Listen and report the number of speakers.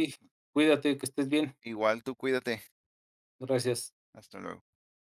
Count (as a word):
two